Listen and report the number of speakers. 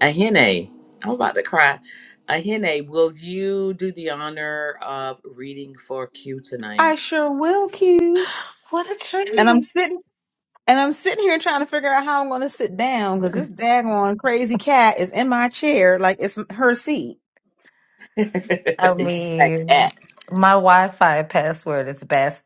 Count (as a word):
three